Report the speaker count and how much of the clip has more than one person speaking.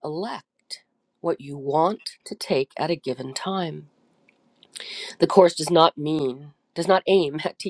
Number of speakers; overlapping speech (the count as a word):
one, no overlap